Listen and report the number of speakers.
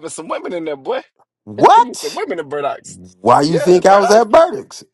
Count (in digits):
2